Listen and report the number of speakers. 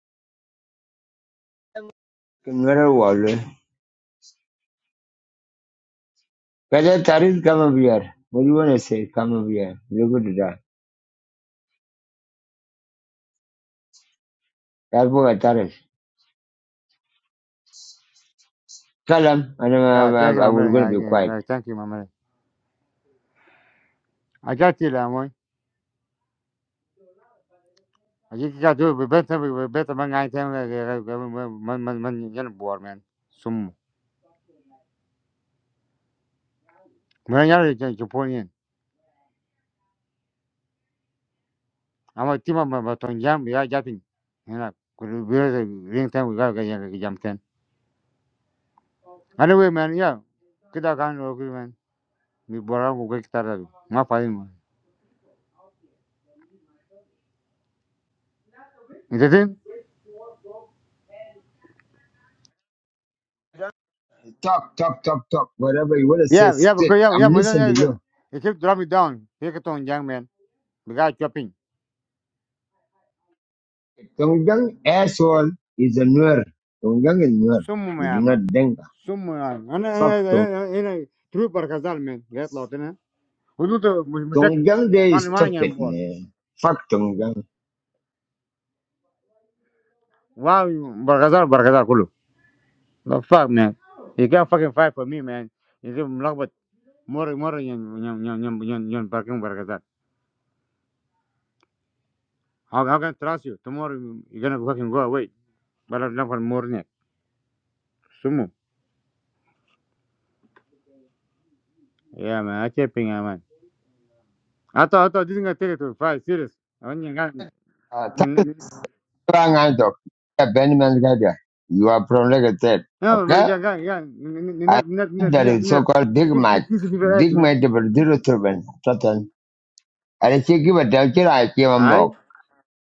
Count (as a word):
two